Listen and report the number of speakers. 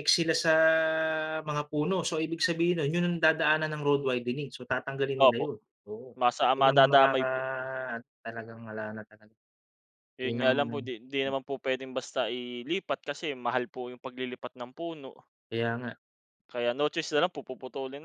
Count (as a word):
two